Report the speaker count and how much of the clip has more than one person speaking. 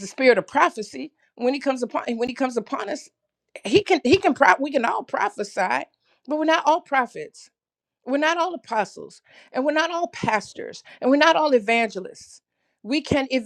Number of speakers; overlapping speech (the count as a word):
one, no overlap